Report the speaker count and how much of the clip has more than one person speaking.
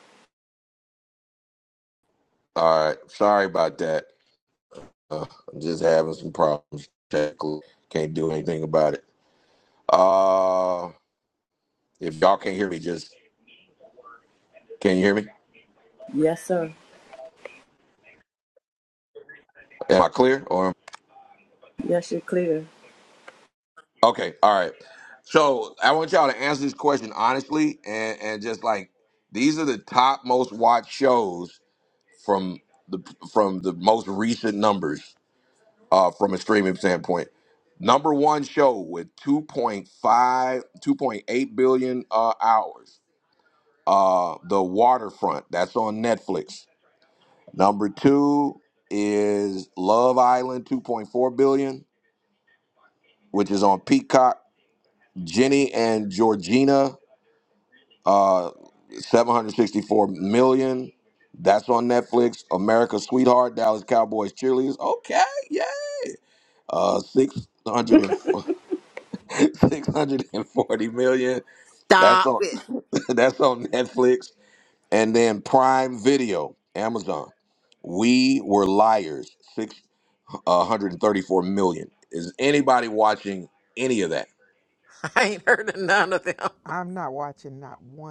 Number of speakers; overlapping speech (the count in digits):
4, under 1%